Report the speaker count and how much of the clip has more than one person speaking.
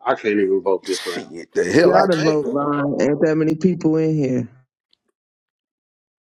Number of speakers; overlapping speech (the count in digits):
3, about 16%